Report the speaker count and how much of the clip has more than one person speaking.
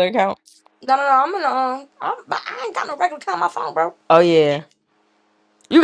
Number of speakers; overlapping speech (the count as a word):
two, no overlap